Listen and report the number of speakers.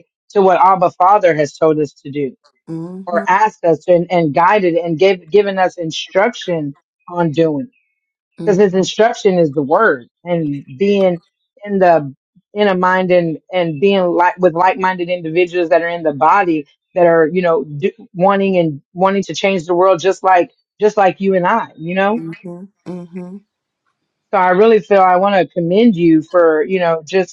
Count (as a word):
two